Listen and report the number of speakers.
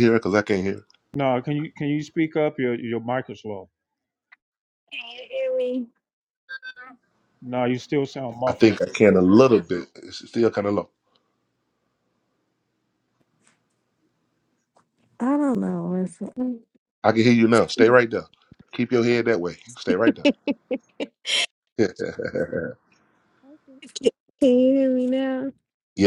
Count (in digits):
3